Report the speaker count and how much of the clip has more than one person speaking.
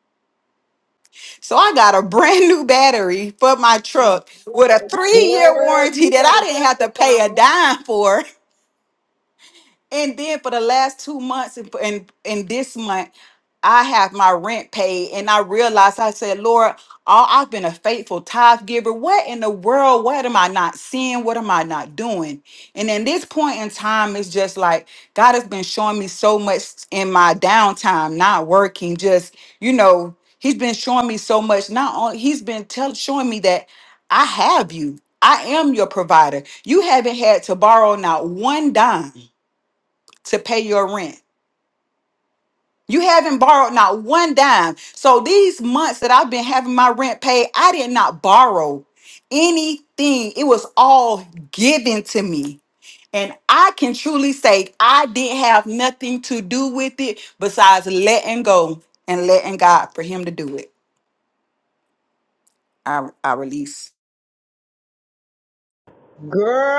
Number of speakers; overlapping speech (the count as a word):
two, about 3%